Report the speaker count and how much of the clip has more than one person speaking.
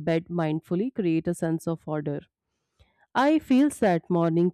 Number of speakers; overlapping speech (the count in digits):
1, no overlap